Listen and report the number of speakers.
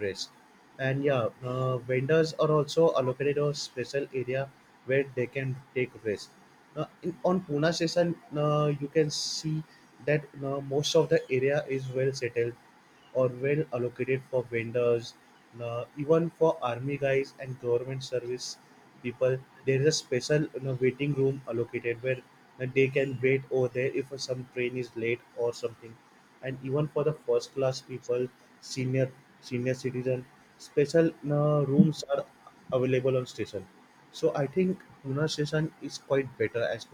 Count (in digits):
1